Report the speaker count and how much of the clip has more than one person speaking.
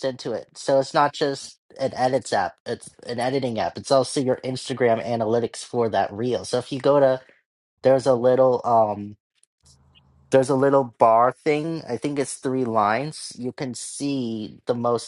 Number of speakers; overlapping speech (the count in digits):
1, no overlap